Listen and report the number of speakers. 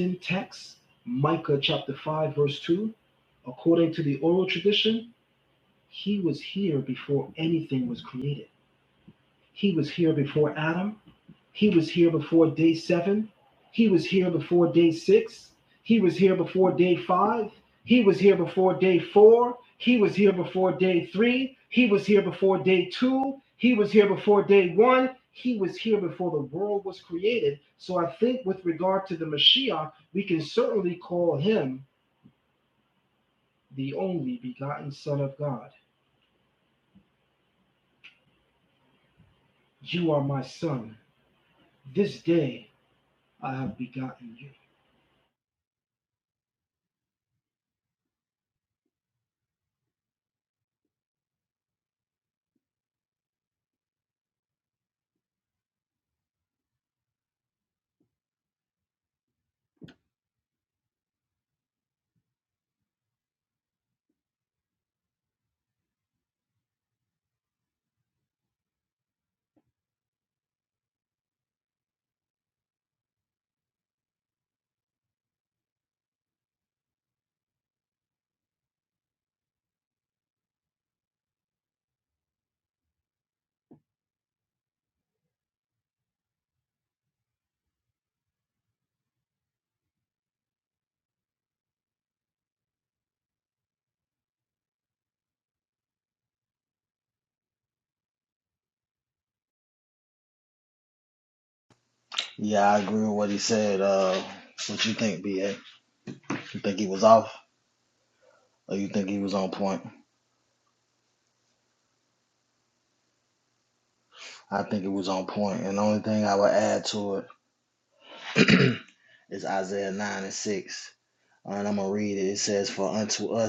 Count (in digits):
2